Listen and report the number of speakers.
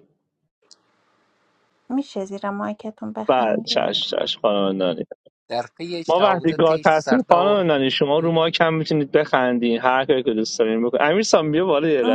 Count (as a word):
three